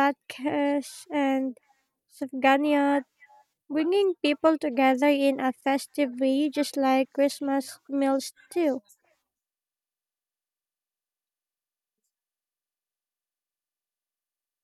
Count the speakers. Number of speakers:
one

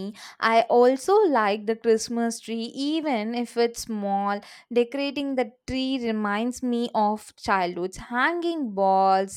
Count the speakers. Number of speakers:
one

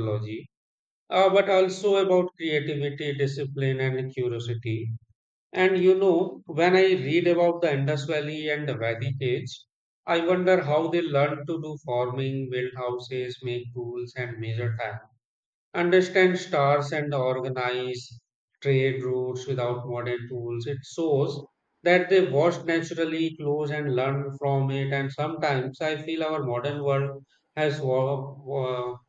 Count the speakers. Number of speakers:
one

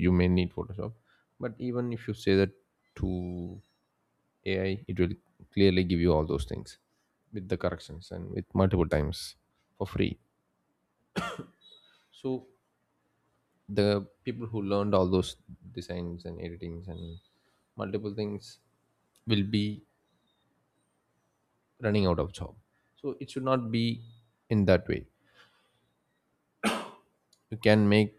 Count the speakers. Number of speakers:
one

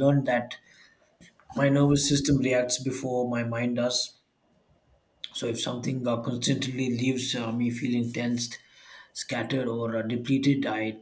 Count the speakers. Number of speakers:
one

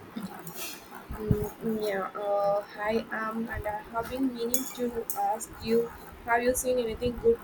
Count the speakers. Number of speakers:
one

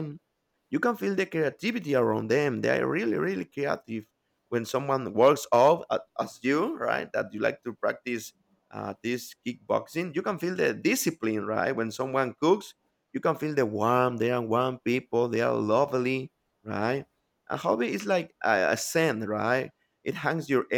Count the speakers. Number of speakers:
one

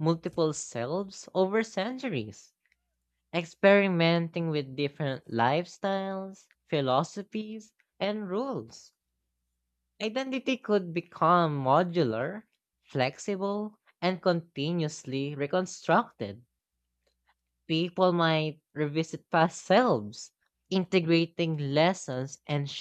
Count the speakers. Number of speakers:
one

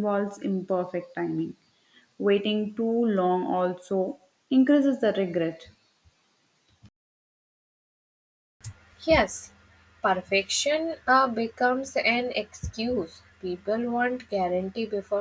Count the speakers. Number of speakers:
two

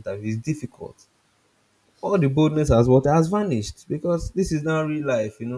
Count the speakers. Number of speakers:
one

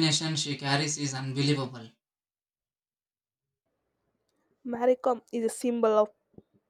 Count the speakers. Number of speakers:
two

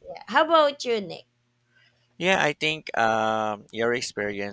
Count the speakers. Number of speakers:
two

